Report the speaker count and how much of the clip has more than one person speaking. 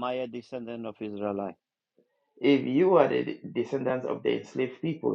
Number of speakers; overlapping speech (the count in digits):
2, no overlap